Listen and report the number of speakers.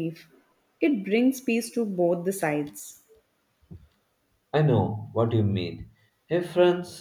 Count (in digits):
2